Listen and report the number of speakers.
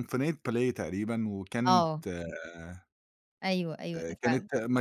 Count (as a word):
two